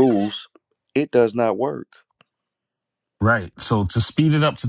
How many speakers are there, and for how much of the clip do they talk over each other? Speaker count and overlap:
2, no overlap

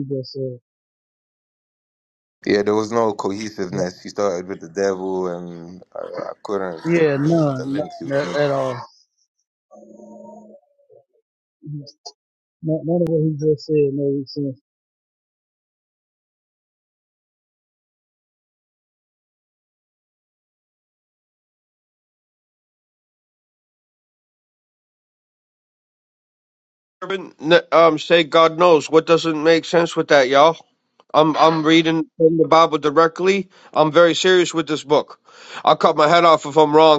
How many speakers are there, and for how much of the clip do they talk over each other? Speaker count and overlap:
3, about 4%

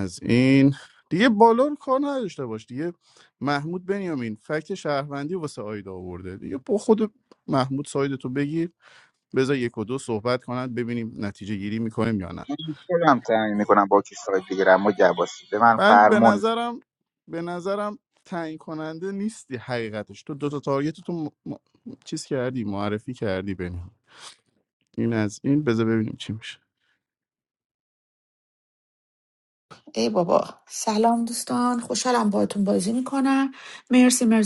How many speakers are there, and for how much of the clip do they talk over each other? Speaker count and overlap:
3, about 2%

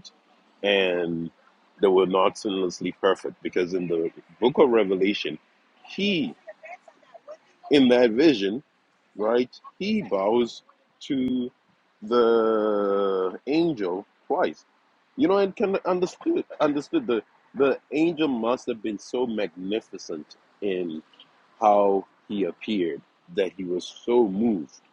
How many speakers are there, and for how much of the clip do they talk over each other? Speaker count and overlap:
1, no overlap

